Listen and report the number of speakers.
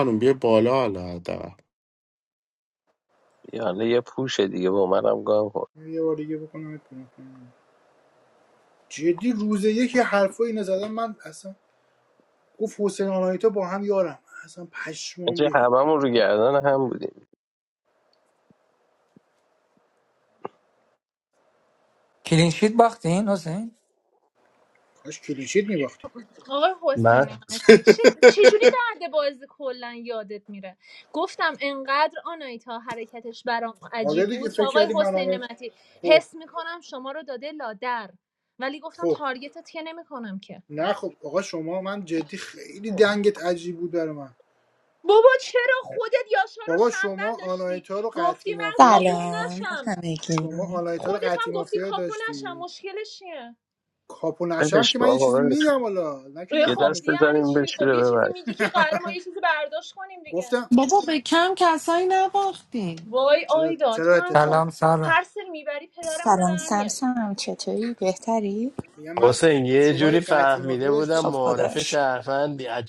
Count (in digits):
8